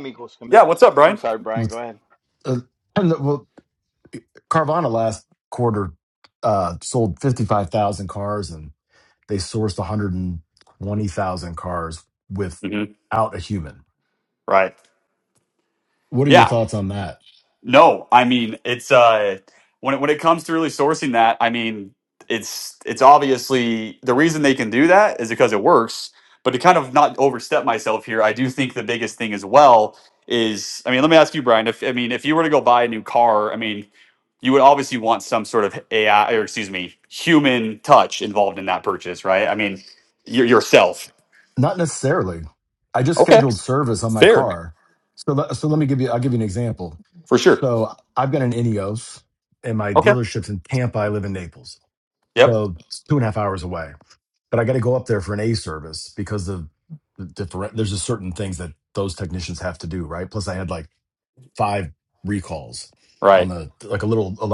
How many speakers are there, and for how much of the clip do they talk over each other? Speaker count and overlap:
3, about 4%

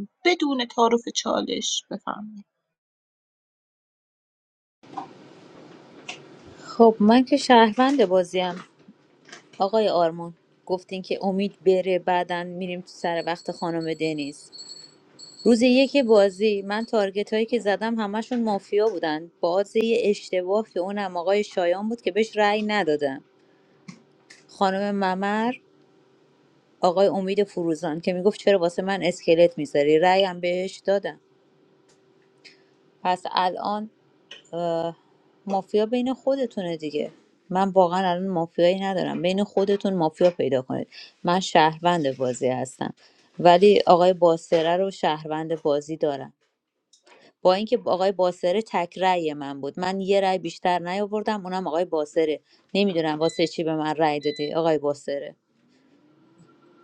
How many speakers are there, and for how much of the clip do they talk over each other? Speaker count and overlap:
2, no overlap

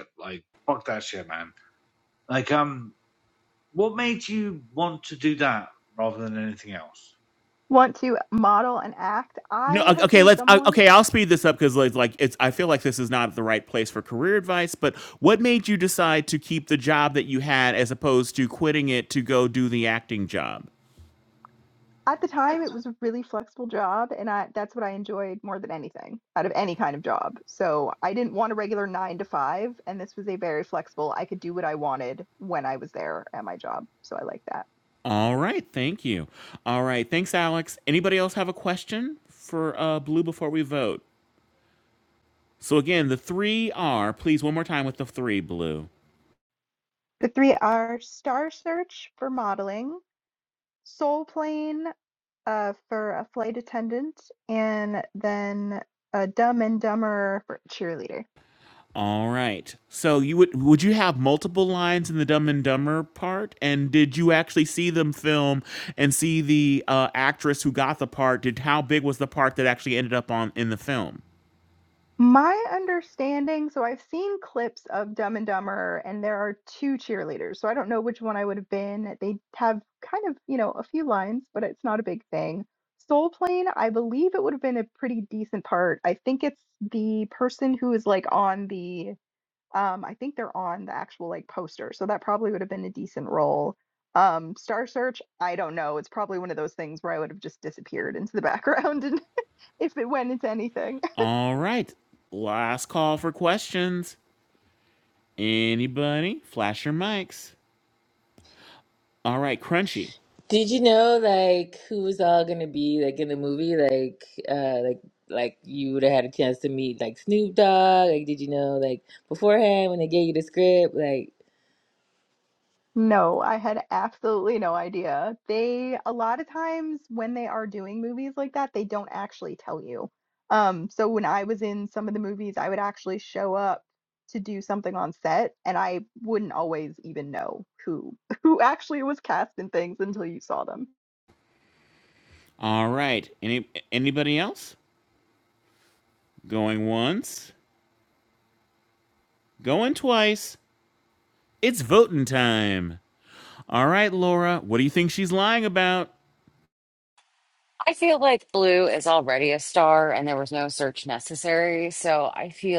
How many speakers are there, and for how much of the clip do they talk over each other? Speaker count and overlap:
5, about 1%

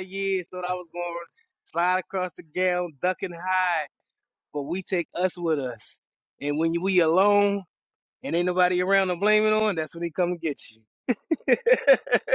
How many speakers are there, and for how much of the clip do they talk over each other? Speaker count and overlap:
1, no overlap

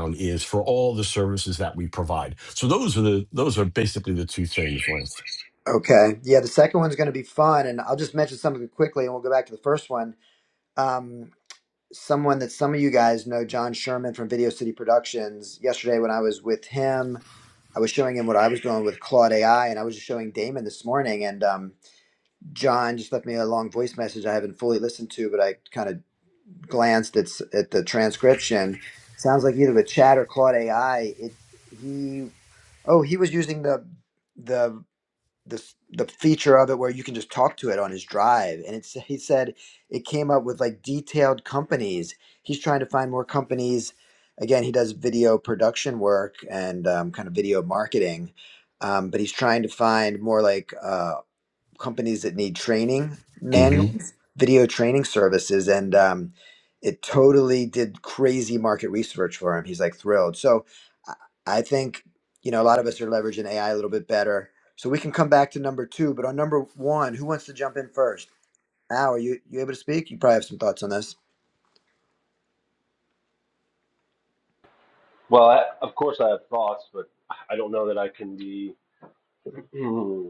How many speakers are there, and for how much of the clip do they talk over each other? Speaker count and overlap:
3, under 1%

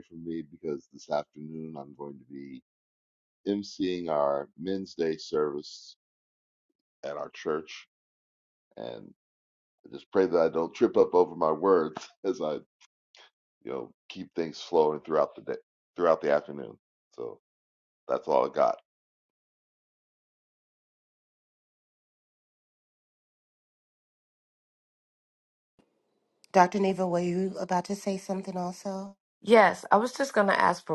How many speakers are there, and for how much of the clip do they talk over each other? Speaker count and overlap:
3, no overlap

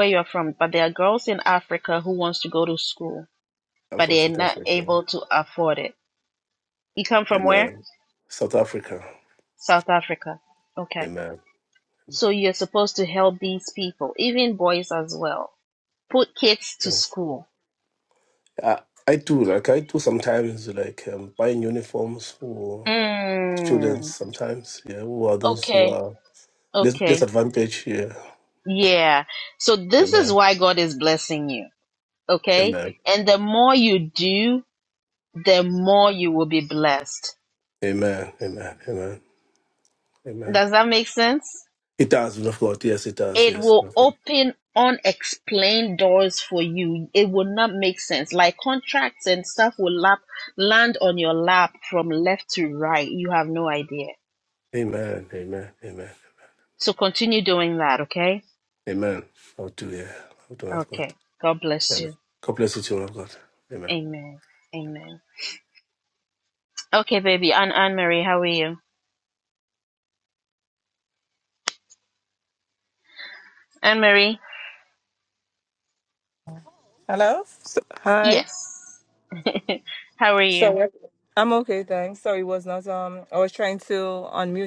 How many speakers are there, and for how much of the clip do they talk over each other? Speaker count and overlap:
3, about 6%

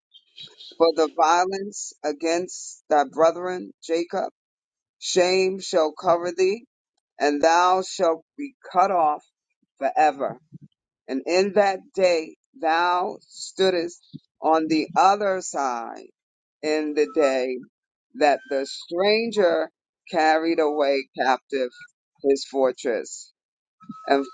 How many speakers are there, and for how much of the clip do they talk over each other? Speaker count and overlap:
1, no overlap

